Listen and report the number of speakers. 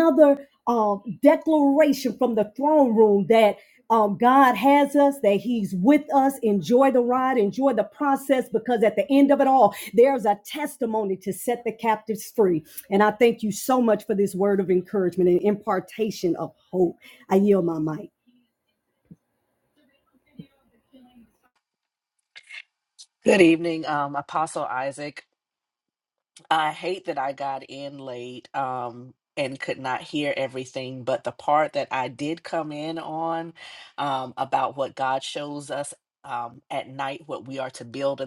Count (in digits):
2